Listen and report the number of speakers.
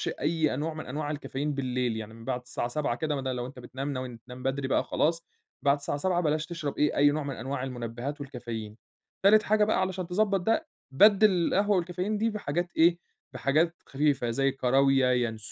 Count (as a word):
one